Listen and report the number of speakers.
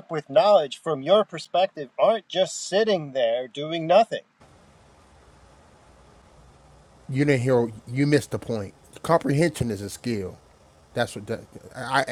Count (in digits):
2